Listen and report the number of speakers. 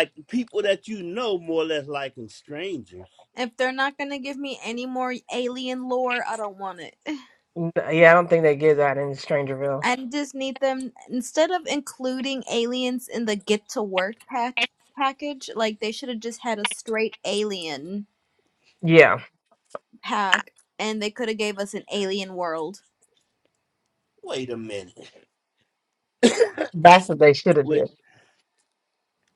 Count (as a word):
three